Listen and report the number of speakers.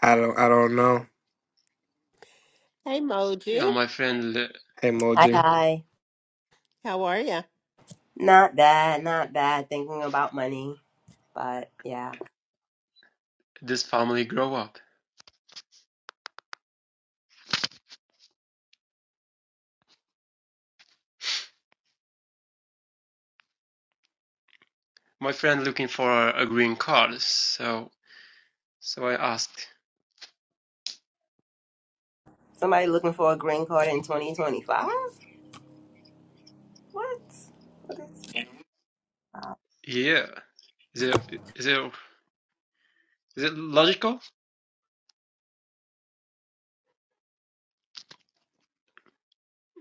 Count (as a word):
four